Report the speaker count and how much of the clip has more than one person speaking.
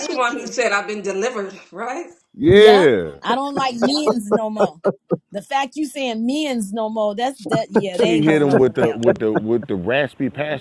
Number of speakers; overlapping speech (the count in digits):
3, about 15%